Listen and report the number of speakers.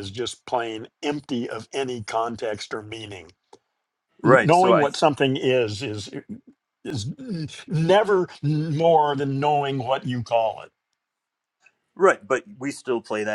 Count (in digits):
2